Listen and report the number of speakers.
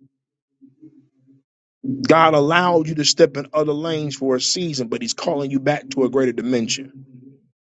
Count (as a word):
one